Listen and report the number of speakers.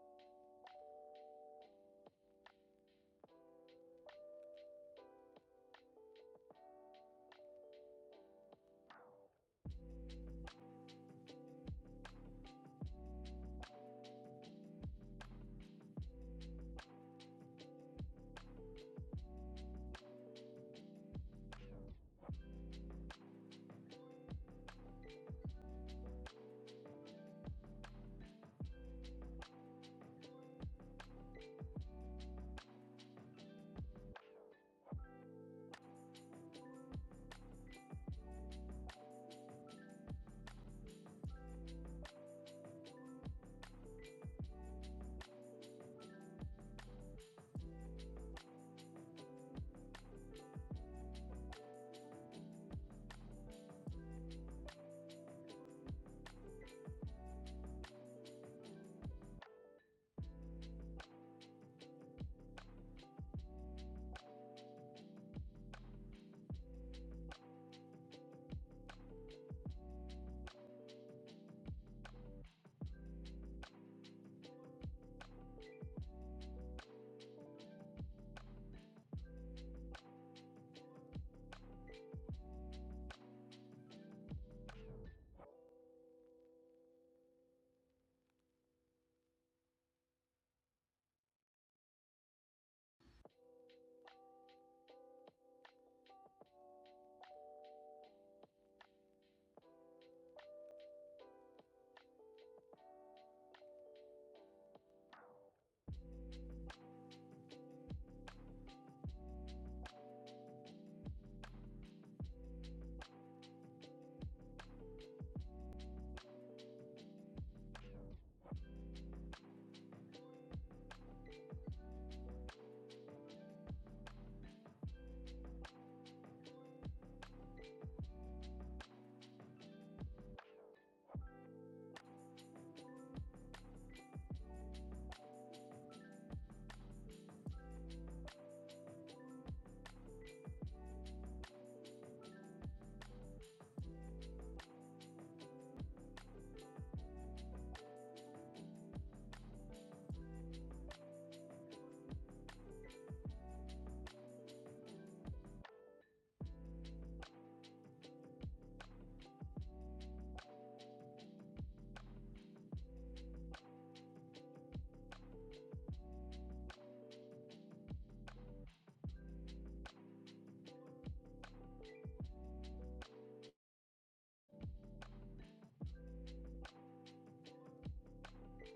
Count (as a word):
zero